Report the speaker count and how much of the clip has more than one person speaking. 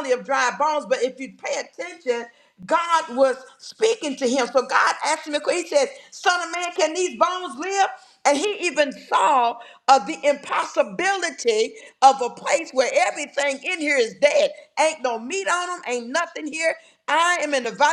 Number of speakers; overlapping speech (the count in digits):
1, no overlap